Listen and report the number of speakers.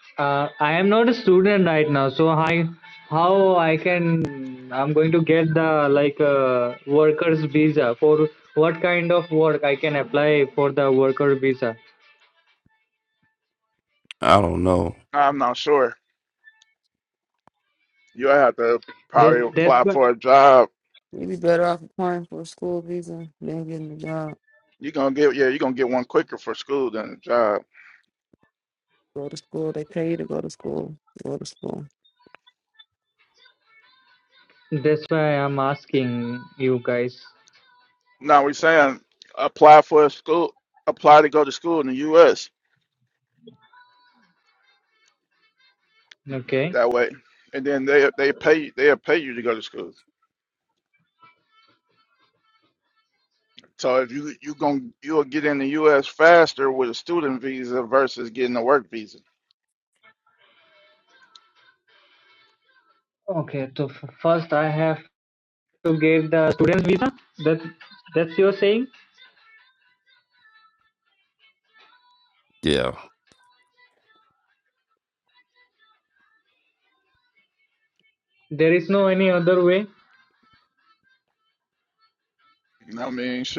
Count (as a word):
four